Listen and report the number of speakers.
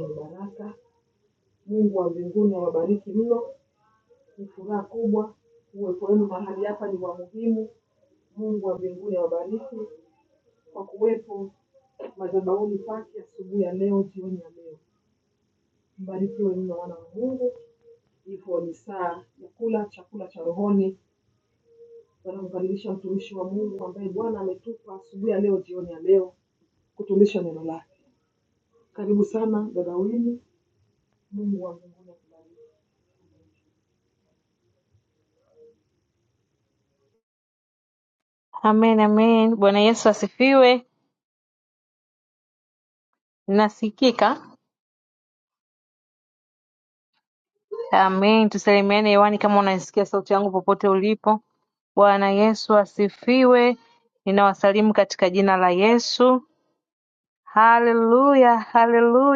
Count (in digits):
2